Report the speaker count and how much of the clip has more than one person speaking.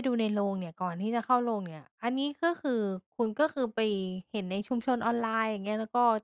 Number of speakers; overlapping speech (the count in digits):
1, no overlap